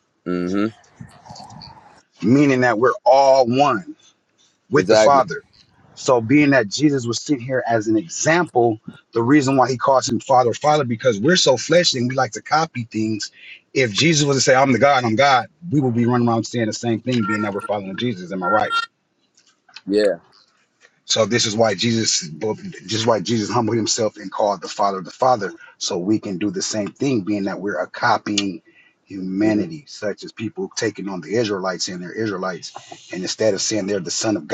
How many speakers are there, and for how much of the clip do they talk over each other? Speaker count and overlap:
2, about 2%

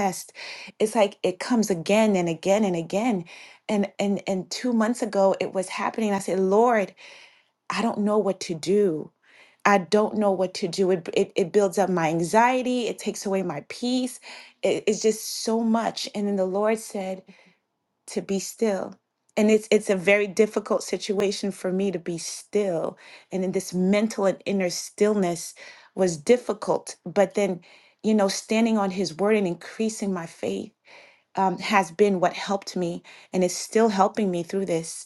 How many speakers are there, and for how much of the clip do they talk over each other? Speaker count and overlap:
1, no overlap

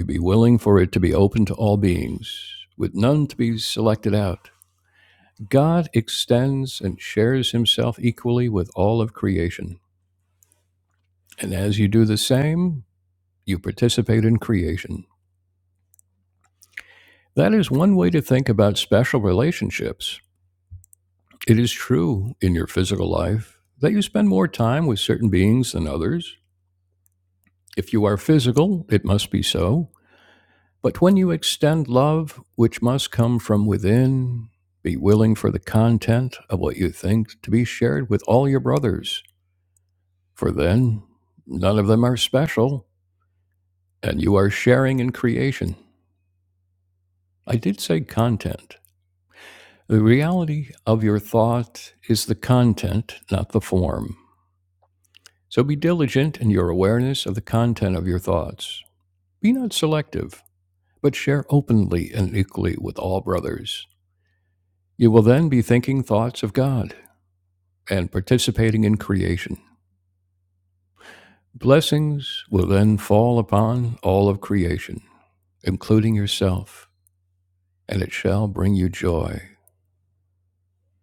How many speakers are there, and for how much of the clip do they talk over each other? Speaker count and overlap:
1, no overlap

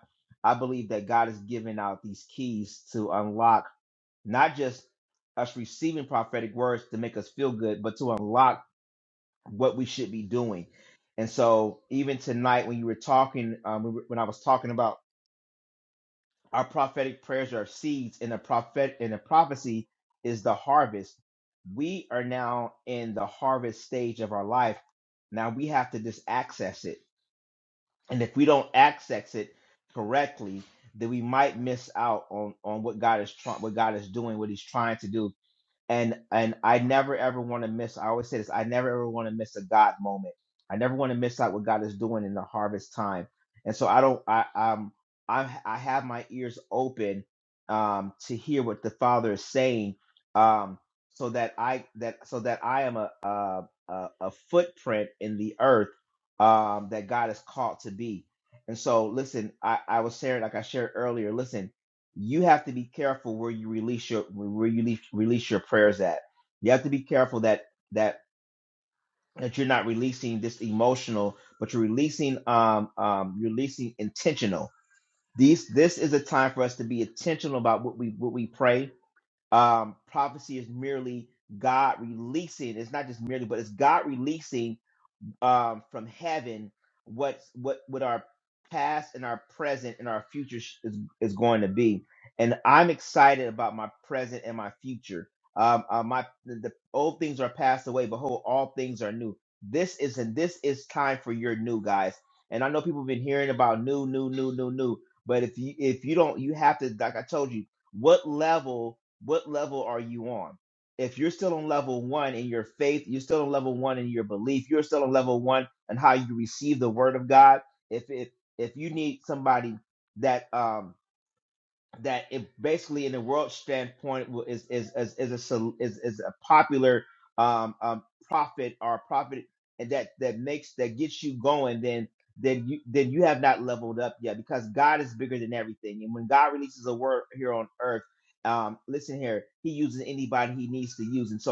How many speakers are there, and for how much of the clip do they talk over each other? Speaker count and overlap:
1, no overlap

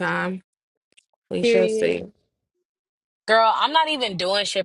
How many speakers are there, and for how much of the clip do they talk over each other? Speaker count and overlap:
2, about 13%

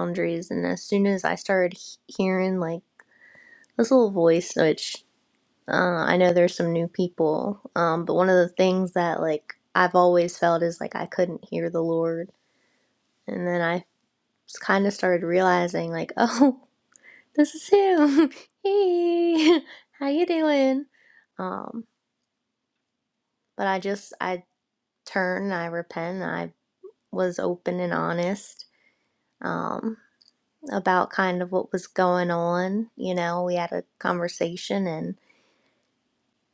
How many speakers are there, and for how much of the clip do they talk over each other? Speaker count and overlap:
1, no overlap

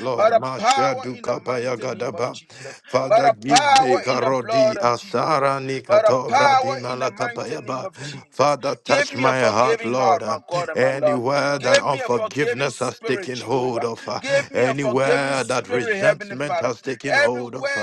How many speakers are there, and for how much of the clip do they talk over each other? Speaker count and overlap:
2, about 71%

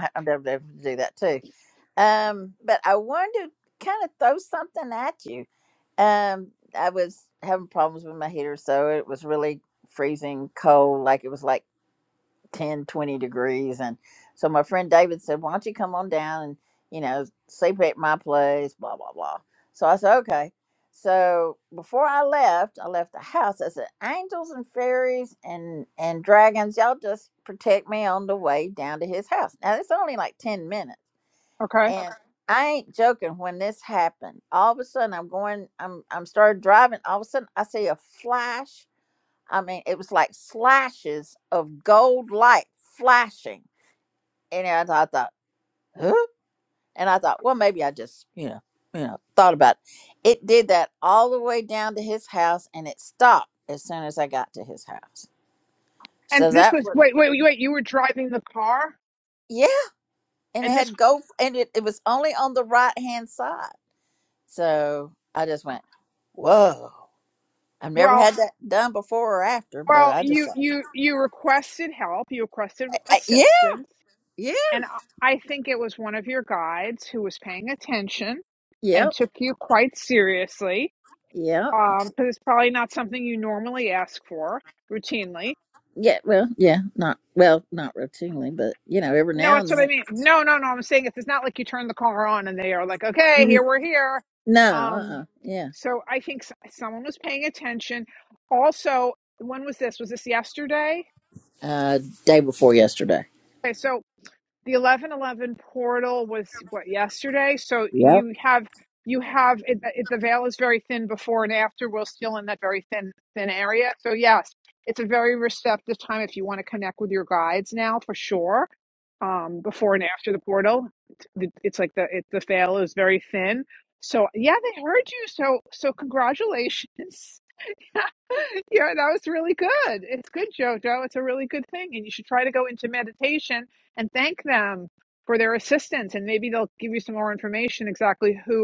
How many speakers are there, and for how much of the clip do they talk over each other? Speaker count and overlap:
2, about 3%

